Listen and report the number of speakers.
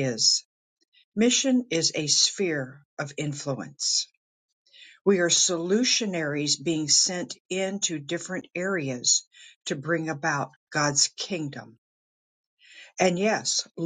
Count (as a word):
one